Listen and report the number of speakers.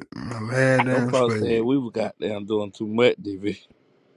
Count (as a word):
two